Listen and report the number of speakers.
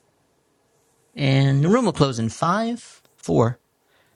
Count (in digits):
1